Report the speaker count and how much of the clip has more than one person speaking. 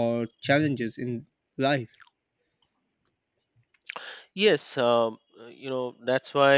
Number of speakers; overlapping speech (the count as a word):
two, no overlap